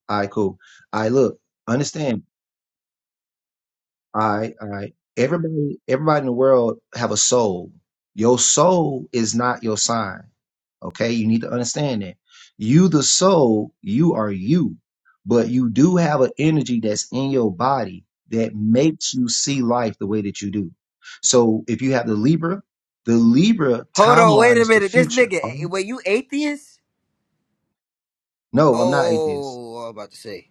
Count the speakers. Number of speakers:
2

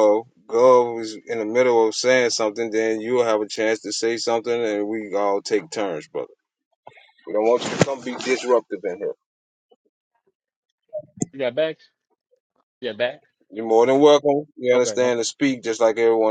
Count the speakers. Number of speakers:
2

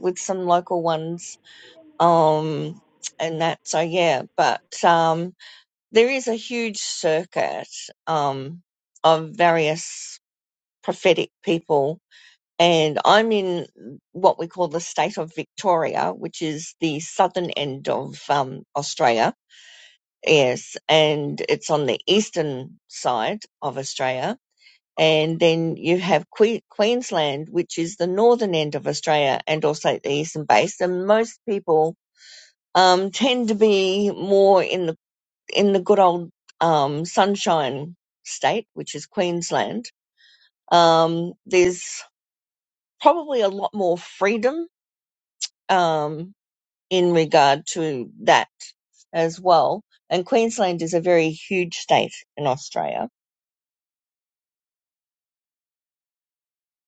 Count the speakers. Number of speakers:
1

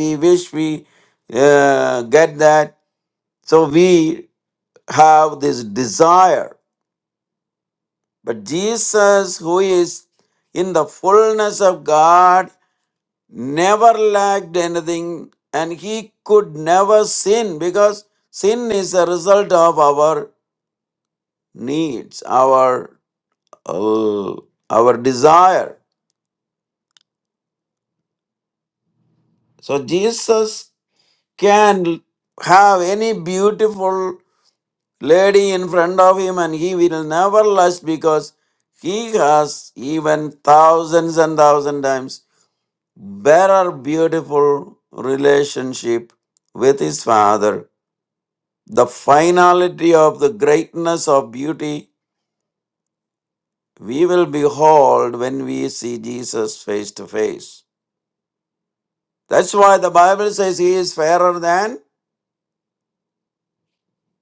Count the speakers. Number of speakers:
1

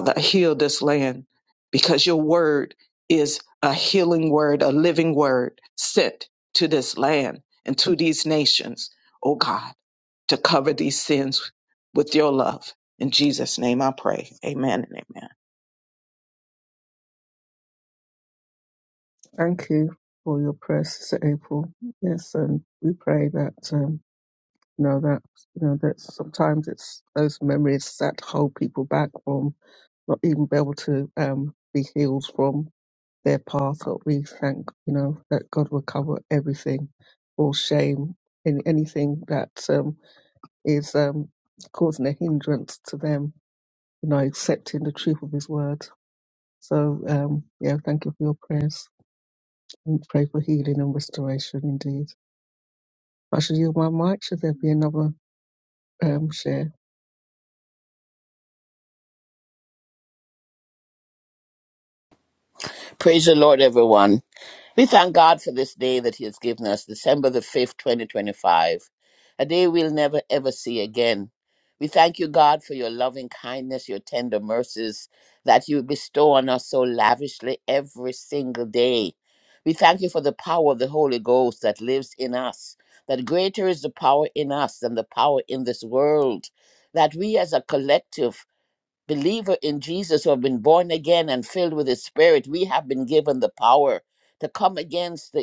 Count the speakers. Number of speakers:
3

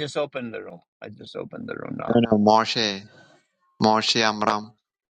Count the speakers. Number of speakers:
2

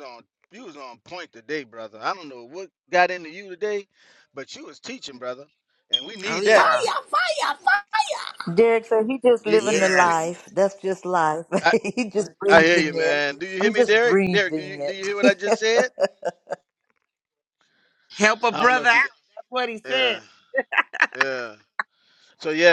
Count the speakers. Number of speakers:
4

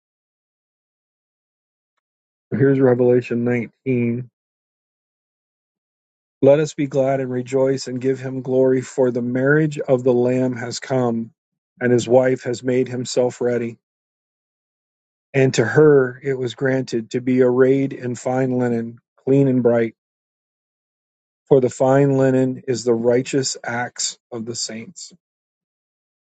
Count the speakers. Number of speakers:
1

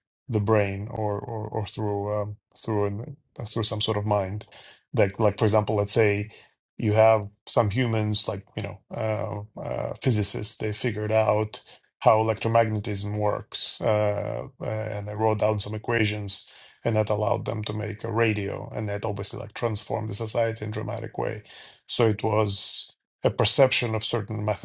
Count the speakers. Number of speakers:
1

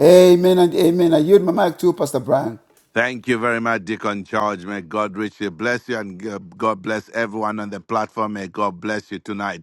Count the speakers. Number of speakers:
2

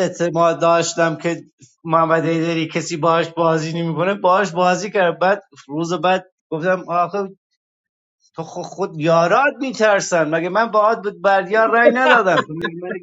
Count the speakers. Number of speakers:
1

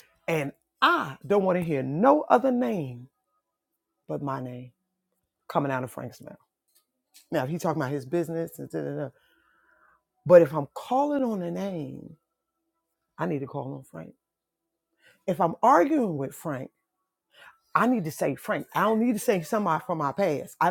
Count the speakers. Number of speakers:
1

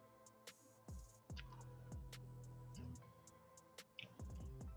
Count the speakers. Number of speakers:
0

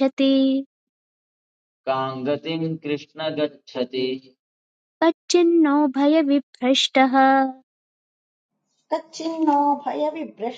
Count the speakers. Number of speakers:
3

